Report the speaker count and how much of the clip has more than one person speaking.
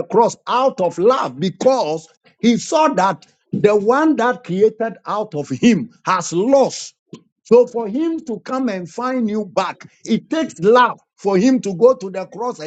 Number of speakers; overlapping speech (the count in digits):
1, no overlap